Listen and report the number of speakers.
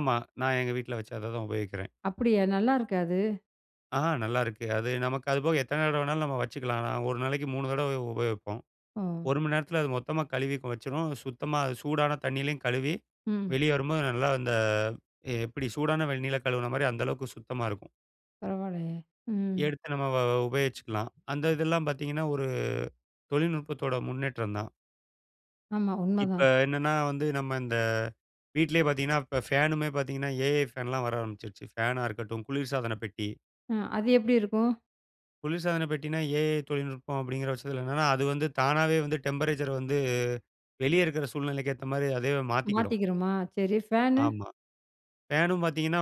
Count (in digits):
2